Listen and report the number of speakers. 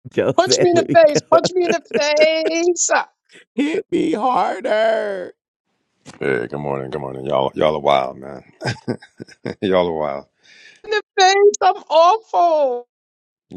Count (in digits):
3